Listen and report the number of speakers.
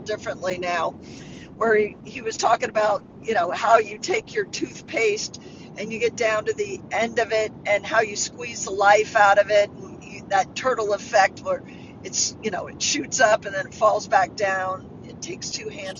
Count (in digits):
1